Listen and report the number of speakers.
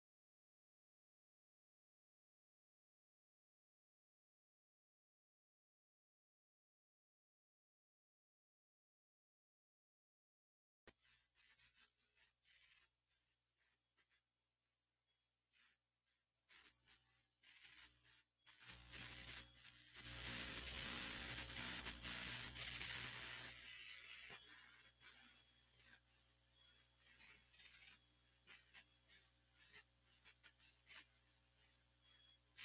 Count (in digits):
0